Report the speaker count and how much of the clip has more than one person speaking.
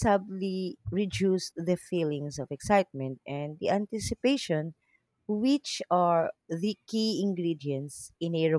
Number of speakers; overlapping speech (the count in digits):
1, no overlap